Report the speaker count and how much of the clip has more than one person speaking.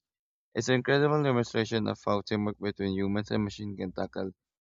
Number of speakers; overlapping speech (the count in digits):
1, no overlap